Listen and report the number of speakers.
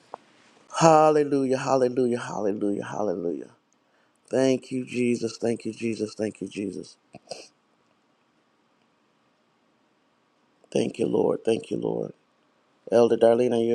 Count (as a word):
one